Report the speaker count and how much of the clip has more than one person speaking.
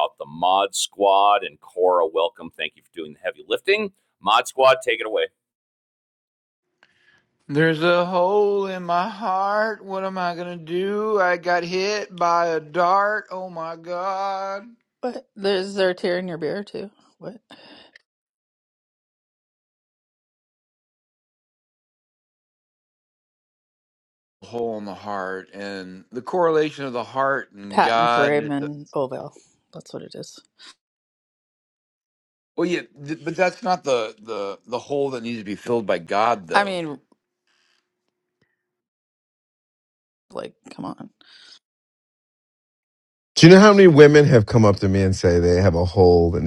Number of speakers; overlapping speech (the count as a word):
four, about 2%